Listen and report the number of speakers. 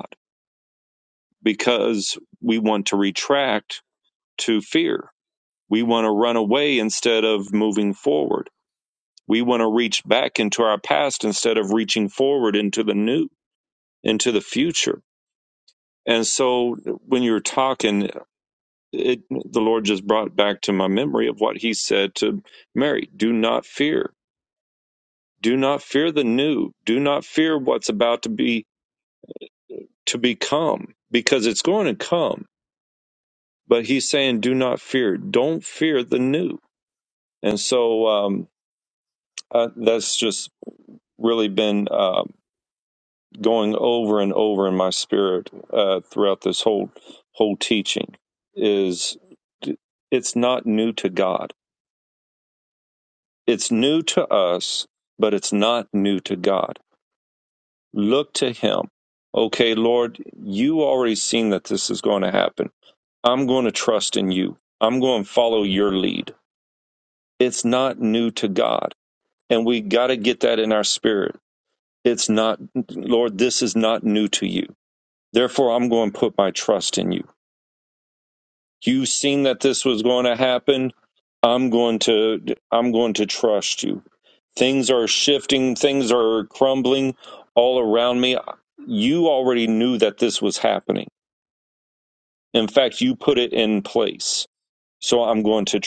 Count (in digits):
1